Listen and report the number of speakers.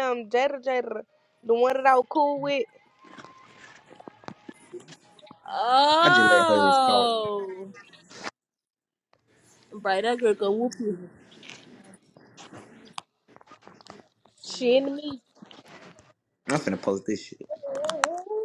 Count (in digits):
3